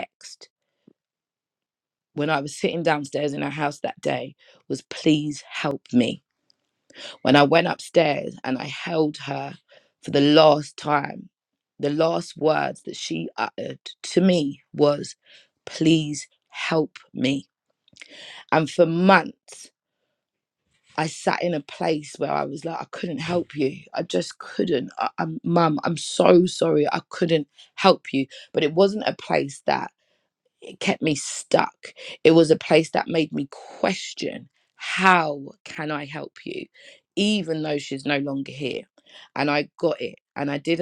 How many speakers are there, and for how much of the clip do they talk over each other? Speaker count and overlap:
1, no overlap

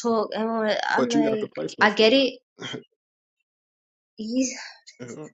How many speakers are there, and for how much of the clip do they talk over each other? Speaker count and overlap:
2, about 25%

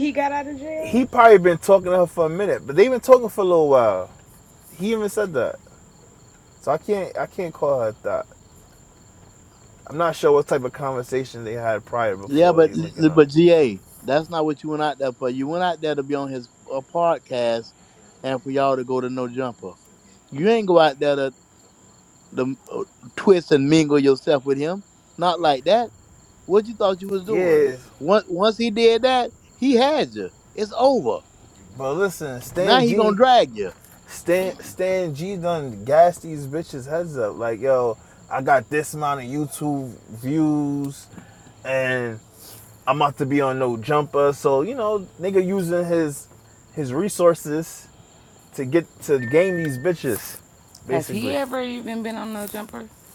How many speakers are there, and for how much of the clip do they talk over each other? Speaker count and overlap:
4, about 4%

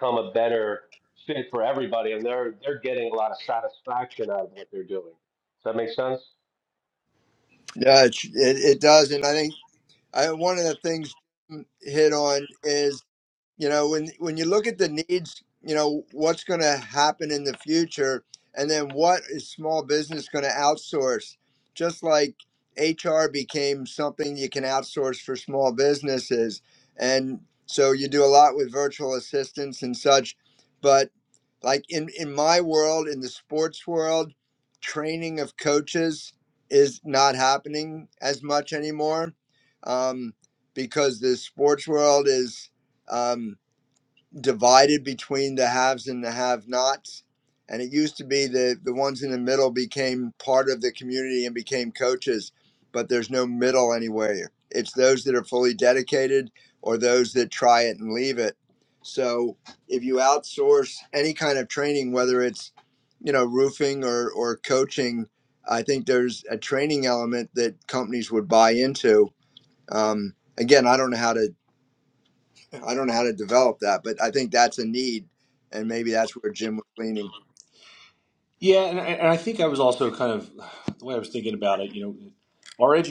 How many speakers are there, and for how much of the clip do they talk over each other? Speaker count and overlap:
3, no overlap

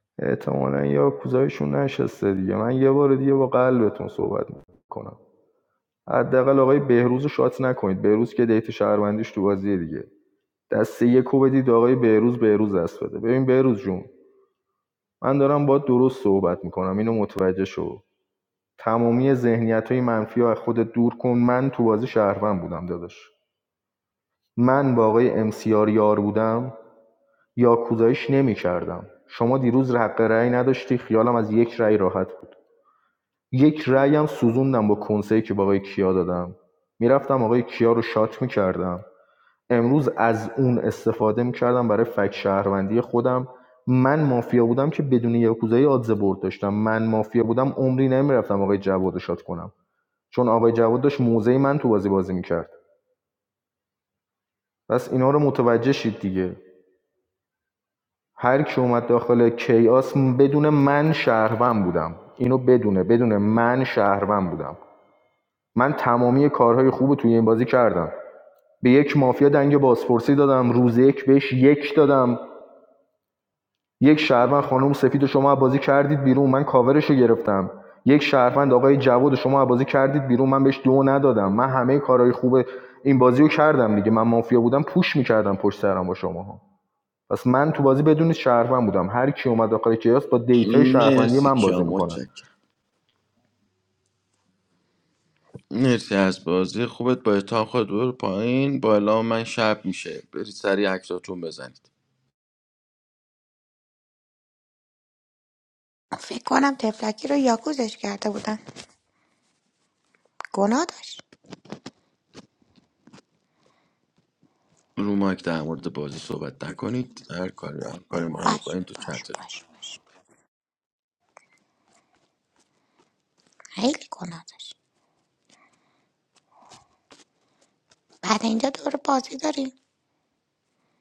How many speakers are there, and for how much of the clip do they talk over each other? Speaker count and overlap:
3, about 2%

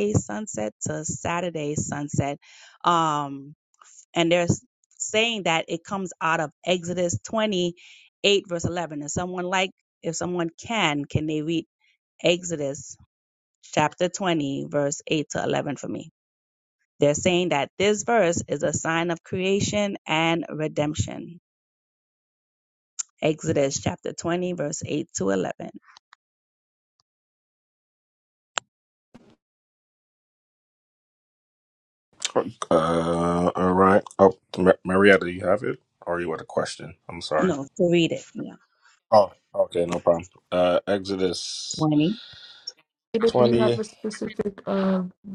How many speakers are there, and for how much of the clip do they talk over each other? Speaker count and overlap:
3, about 1%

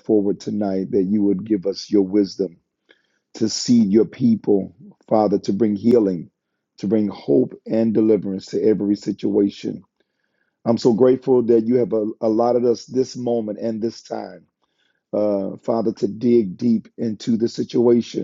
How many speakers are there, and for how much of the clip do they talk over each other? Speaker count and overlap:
1, no overlap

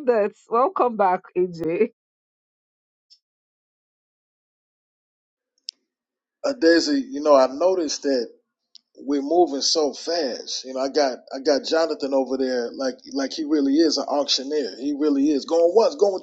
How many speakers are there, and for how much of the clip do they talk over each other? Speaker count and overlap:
2, no overlap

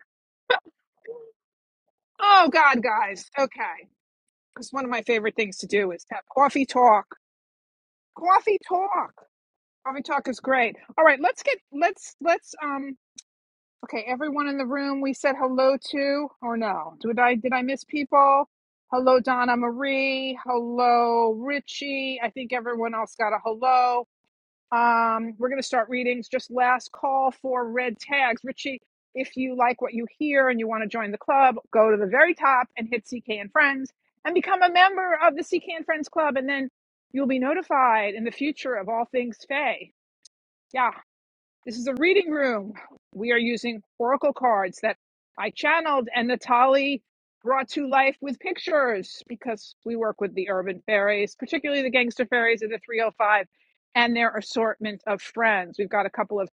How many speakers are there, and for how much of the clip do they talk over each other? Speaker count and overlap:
1, no overlap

